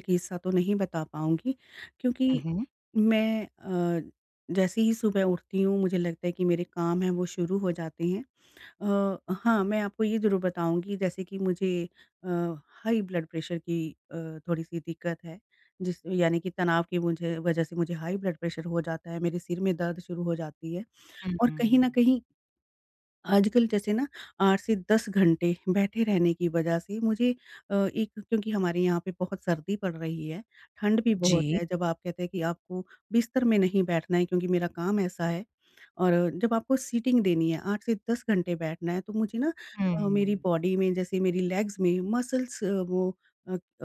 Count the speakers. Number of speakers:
2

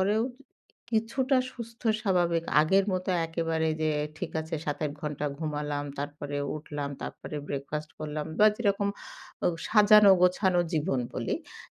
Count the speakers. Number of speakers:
1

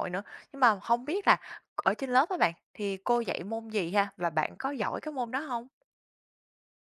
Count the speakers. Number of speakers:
1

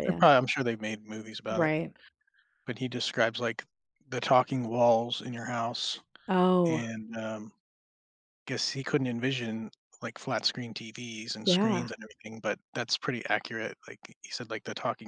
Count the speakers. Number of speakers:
2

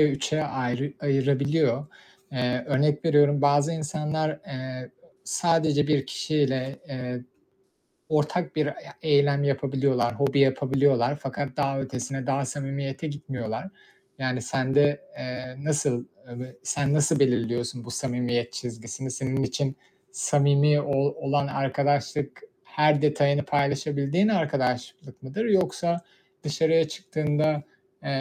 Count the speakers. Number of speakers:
1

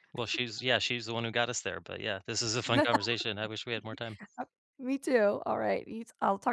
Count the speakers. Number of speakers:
2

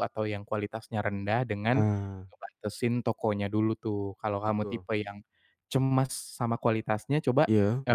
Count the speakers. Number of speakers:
2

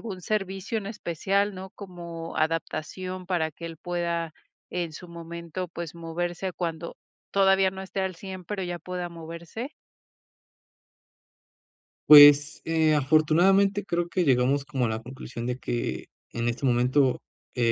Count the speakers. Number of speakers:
2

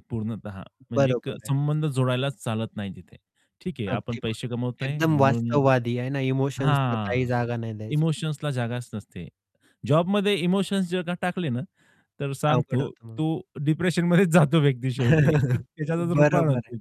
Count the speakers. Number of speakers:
2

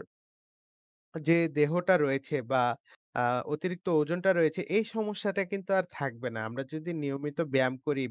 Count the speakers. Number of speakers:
1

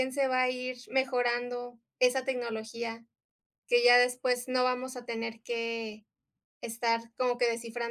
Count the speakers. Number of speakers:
1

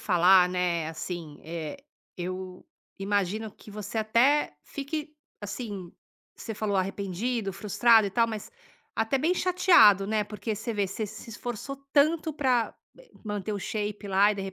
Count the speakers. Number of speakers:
1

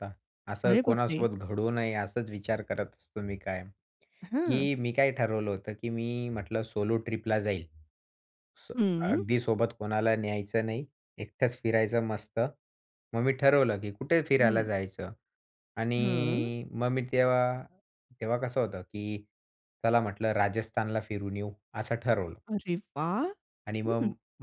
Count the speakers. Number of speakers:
2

